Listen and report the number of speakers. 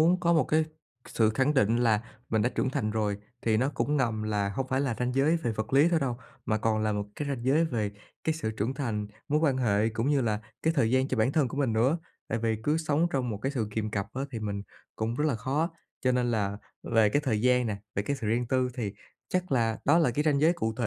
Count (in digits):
1